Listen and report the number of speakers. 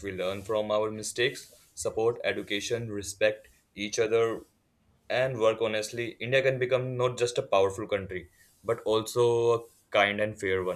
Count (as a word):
one